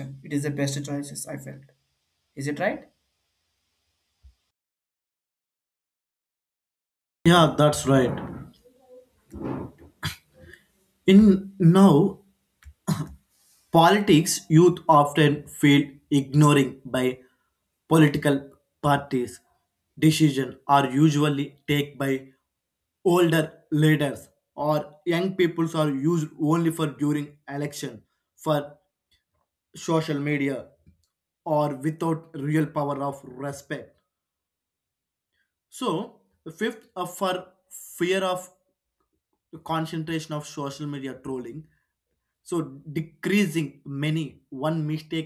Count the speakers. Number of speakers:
2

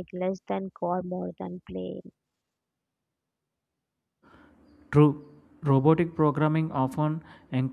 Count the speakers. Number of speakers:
2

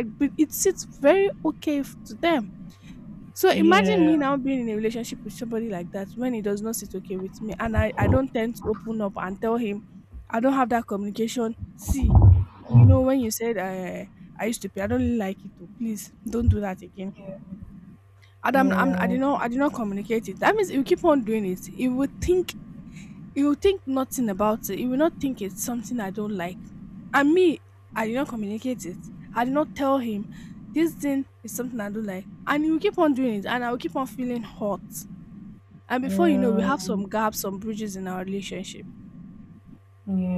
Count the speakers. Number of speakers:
2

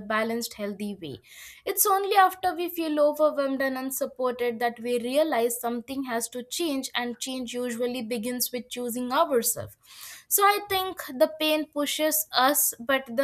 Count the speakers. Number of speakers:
1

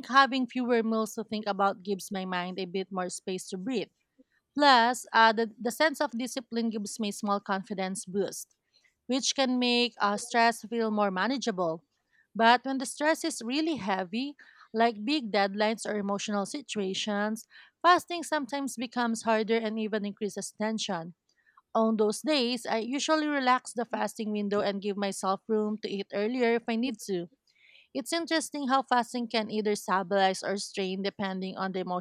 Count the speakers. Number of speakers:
1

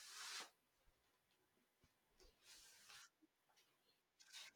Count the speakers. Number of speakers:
0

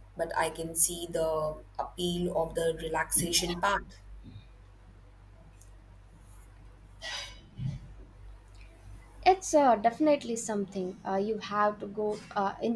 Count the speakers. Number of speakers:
2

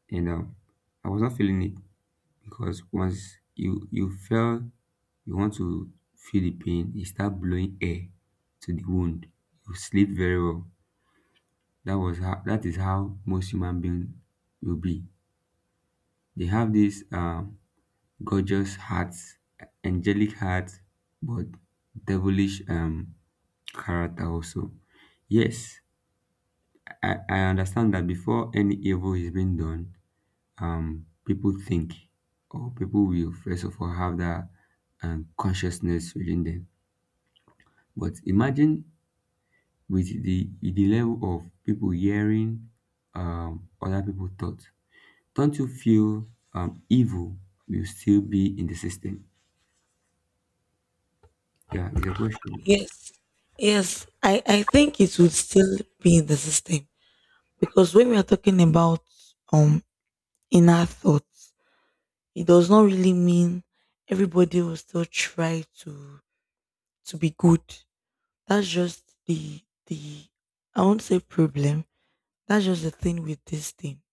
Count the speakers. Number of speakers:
2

